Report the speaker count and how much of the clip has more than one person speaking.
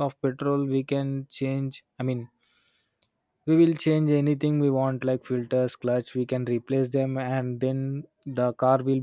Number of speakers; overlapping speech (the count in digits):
1, no overlap